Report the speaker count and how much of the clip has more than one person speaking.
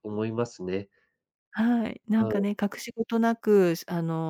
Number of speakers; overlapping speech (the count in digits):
2, about 7%